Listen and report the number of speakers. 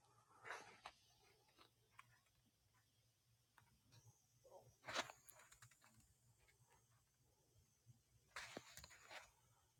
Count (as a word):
zero